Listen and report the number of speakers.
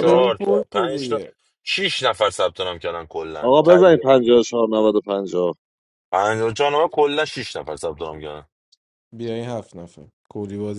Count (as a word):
three